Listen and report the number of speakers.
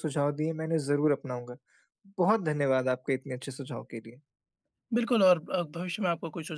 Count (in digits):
2